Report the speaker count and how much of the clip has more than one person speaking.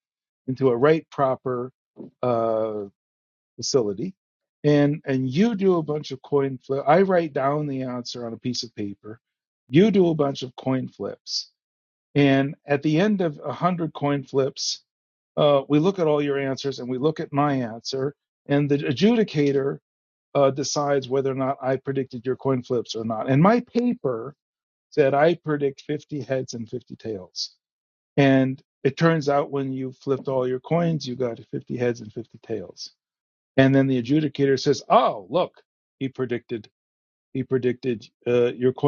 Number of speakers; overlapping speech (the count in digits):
1, no overlap